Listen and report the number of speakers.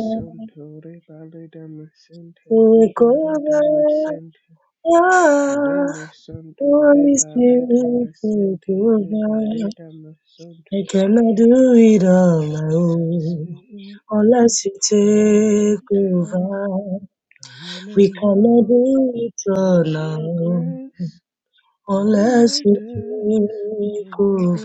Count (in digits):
2